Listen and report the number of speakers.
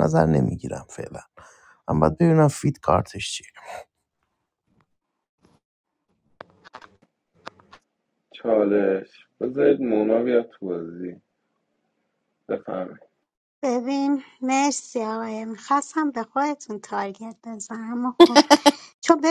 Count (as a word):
three